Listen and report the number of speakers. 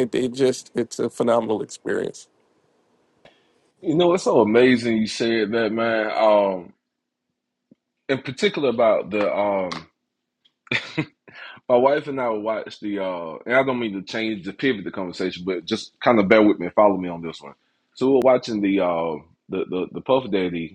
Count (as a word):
two